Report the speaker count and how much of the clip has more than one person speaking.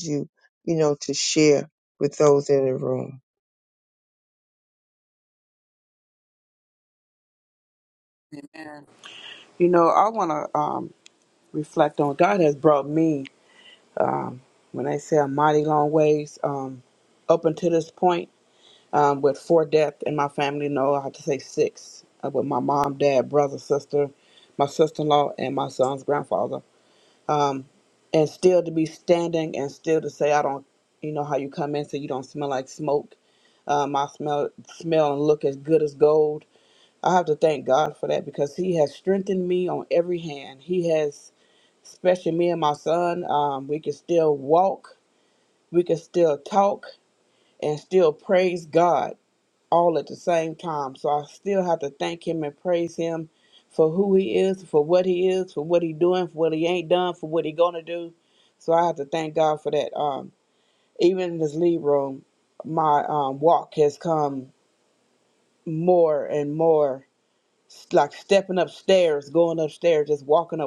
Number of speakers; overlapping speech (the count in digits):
2, no overlap